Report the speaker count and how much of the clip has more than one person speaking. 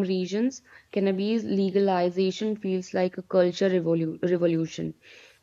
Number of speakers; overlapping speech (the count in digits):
1, no overlap